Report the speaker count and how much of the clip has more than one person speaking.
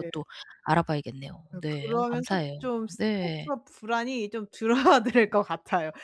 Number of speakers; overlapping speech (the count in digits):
2, about 29%